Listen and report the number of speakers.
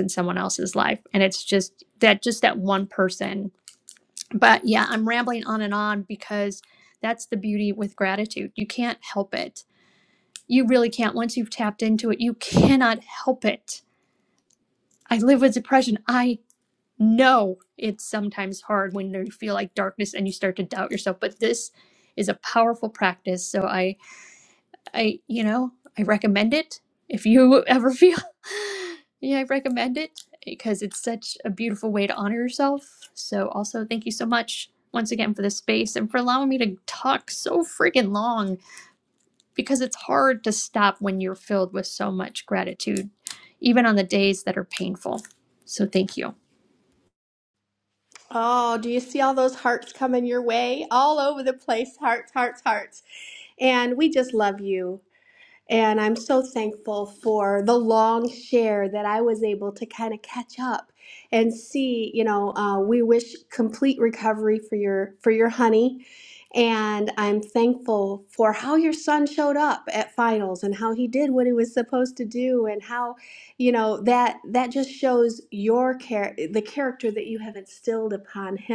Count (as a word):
two